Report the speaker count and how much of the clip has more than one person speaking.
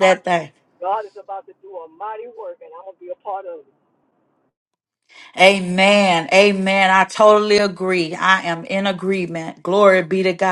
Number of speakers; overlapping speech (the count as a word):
two, no overlap